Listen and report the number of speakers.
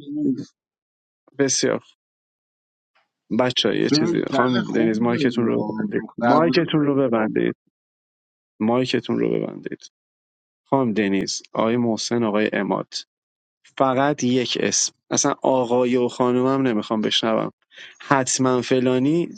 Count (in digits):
2